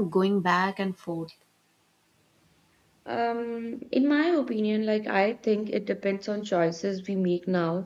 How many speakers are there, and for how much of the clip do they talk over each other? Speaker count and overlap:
two, no overlap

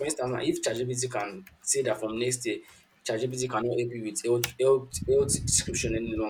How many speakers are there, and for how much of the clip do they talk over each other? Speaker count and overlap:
one, no overlap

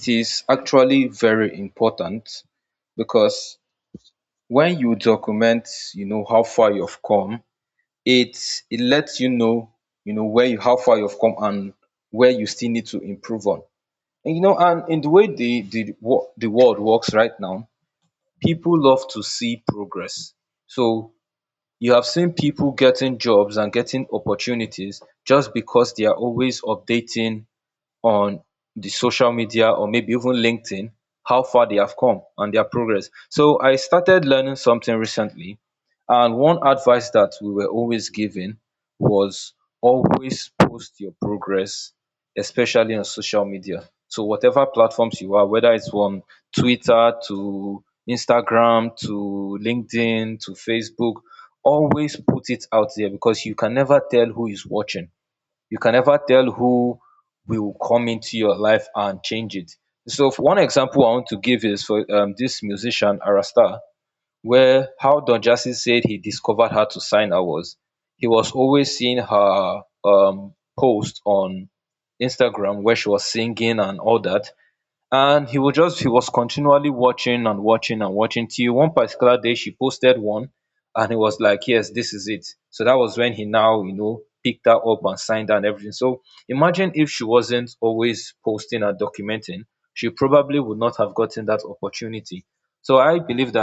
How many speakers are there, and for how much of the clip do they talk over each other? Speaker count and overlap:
one, no overlap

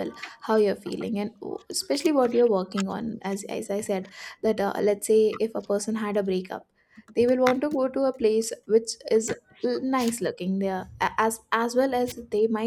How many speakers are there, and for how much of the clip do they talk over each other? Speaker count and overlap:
one, no overlap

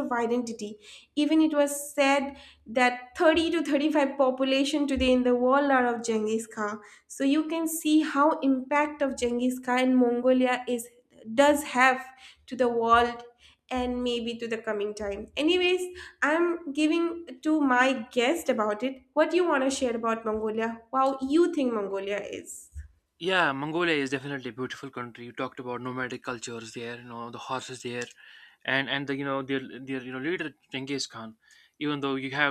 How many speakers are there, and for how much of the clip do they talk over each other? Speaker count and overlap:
two, no overlap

